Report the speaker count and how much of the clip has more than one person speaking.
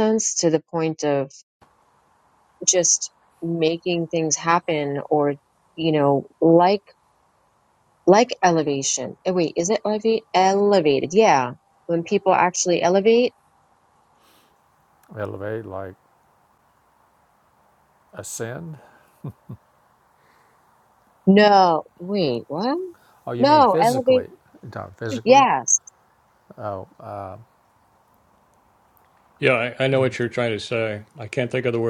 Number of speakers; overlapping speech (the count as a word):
three, about 3%